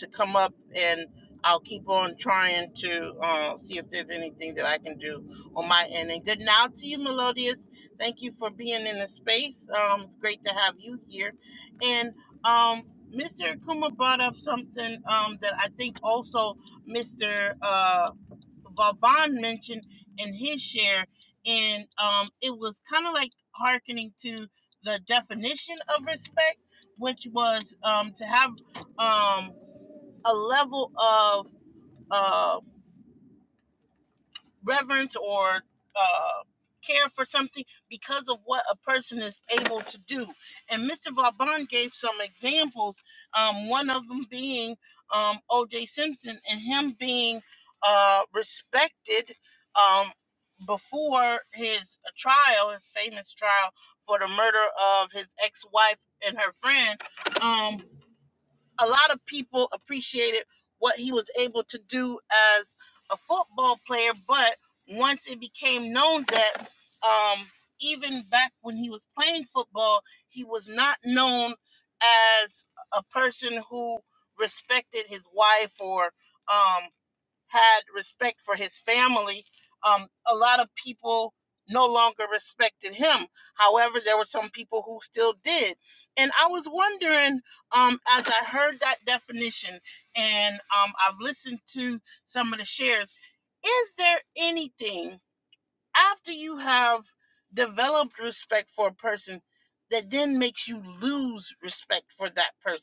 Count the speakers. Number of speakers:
1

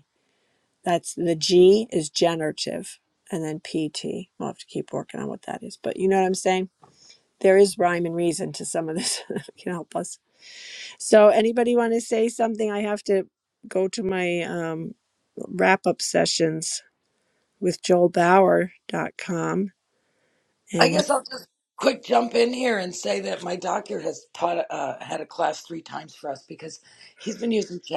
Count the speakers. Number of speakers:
2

